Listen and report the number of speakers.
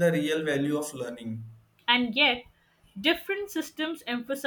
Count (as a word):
two